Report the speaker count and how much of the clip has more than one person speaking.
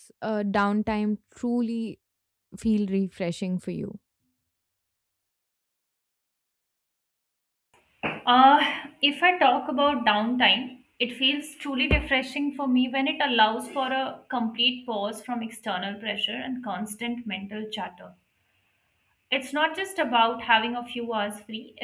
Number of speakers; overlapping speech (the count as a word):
two, no overlap